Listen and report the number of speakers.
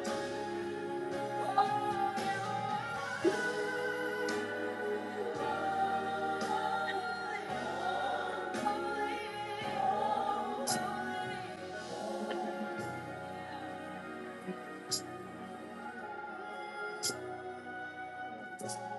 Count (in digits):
0